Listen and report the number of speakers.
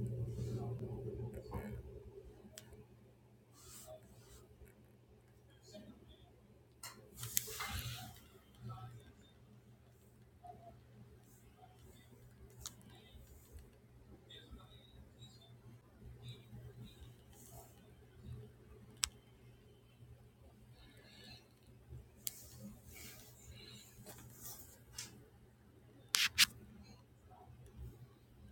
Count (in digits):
0